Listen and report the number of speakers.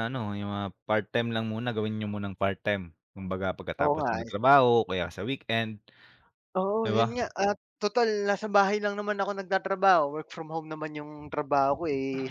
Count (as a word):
two